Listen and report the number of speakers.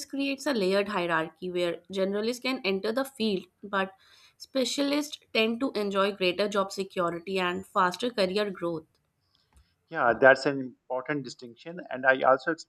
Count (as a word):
two